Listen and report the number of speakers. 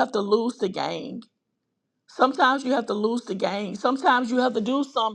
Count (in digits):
1